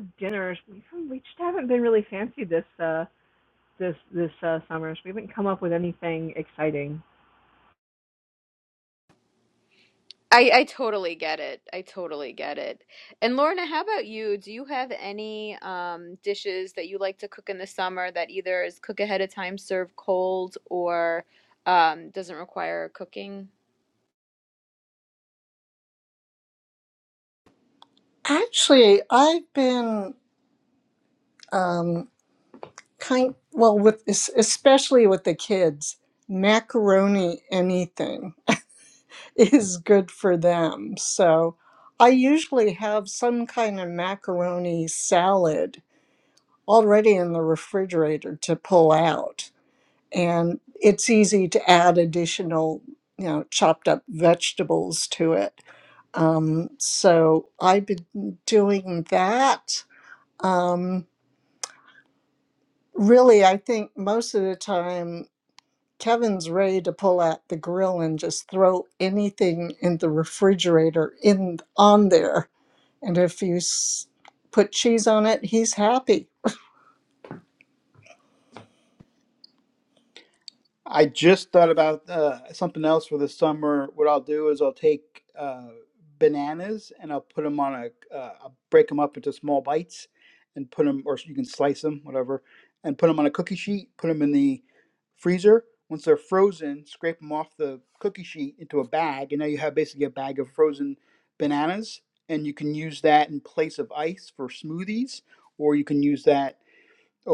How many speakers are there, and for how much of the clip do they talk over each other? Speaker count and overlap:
four, no overlap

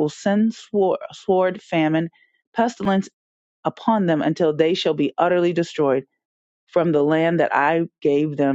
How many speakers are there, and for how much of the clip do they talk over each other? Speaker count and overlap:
one, no overlap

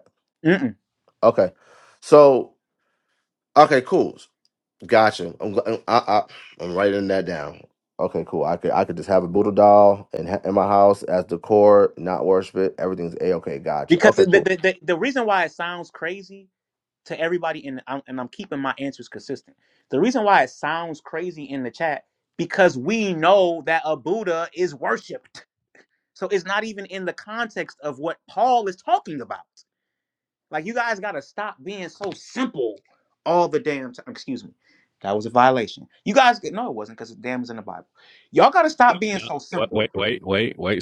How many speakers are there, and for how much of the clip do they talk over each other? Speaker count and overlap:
three, about 2%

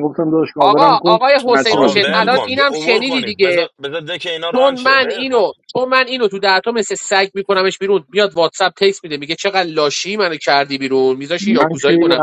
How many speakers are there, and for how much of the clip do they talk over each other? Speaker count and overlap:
three, about 39%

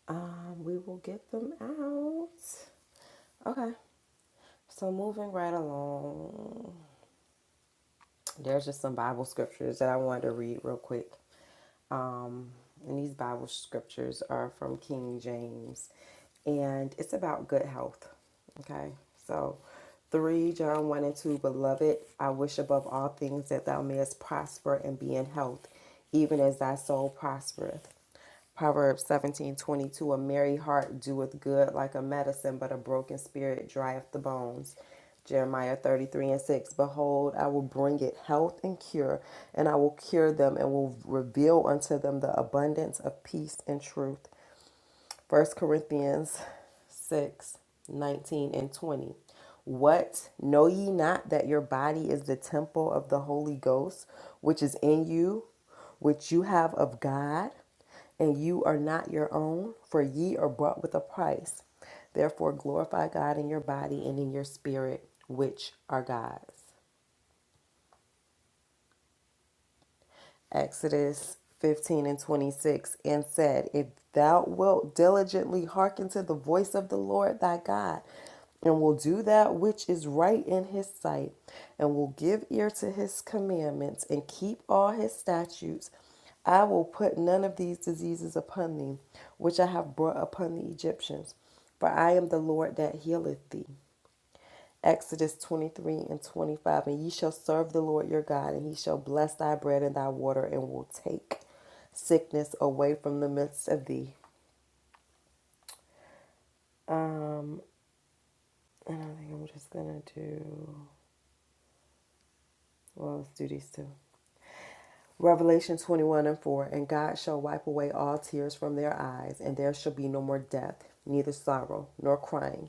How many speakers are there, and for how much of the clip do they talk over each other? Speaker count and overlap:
one, no overlap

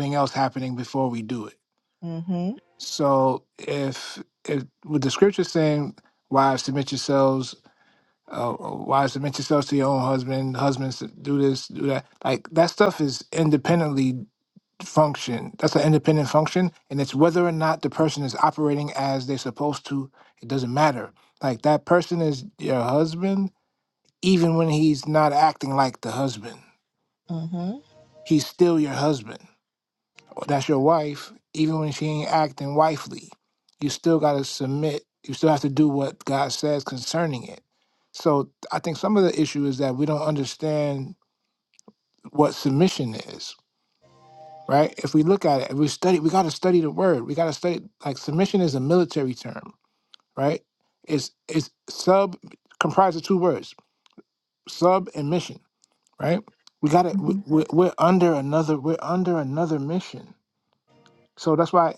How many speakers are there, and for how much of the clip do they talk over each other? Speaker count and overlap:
two, under 1%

